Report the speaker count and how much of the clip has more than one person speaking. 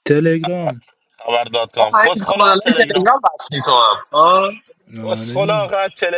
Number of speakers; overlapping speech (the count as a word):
three, about 31%